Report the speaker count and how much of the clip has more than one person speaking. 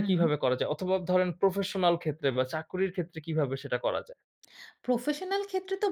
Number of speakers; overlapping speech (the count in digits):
2, about 5%